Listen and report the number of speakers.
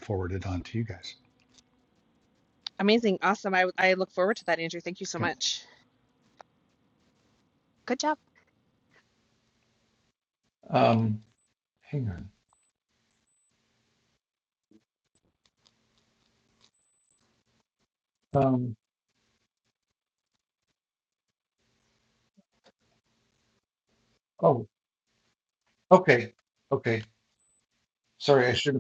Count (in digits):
3